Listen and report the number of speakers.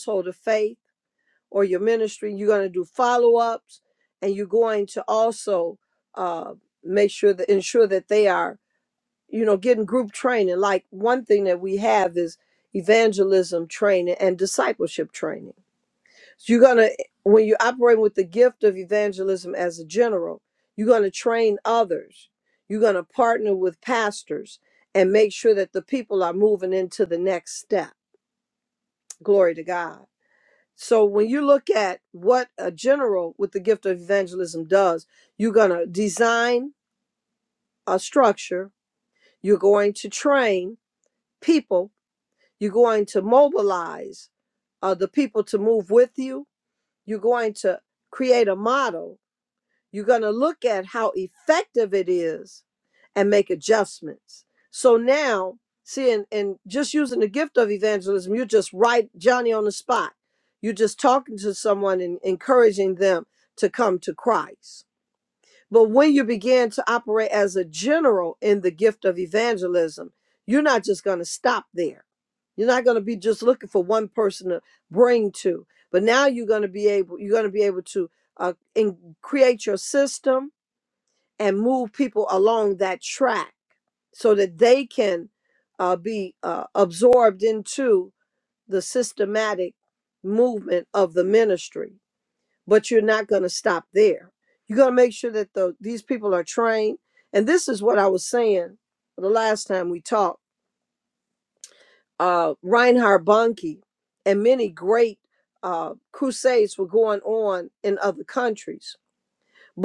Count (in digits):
1